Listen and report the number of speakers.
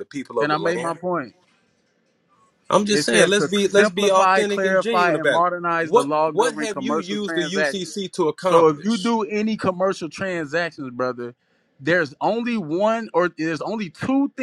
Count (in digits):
2